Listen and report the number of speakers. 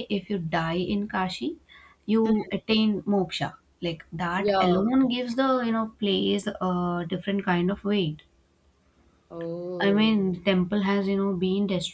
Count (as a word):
two